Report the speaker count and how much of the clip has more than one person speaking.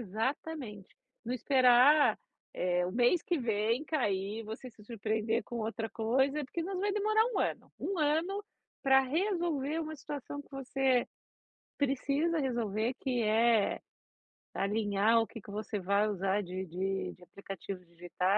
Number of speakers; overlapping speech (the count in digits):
1, no overlap